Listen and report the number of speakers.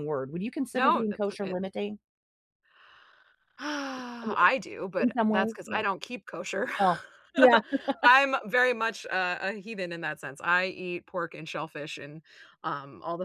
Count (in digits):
2